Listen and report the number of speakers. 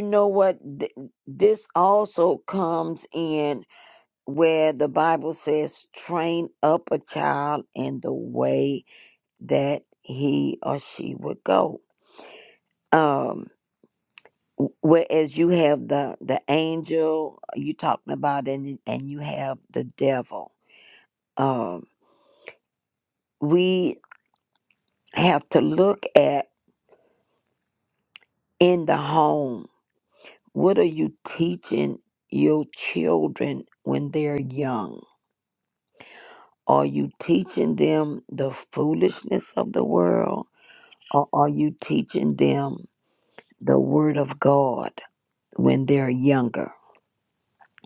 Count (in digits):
1